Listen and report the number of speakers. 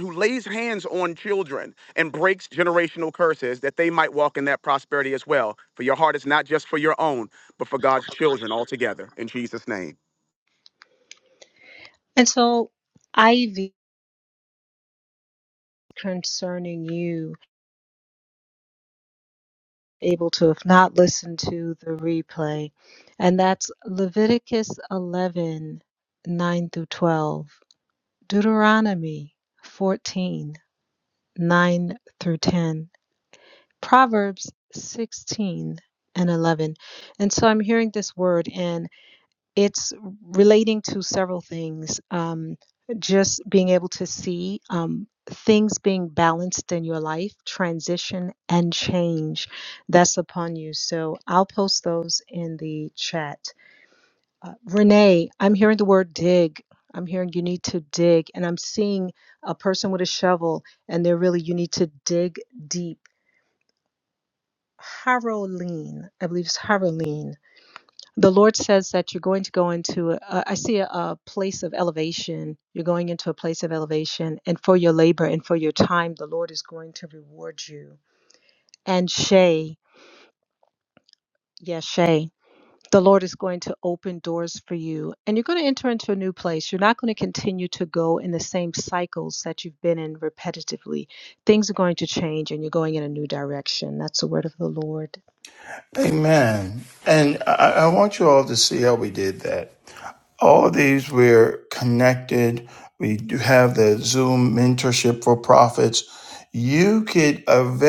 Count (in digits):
3